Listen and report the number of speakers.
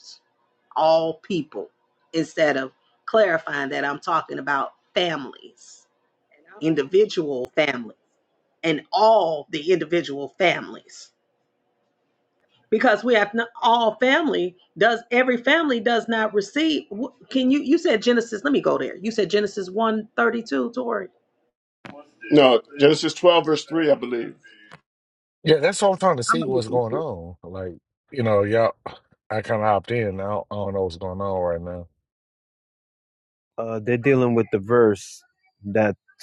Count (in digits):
4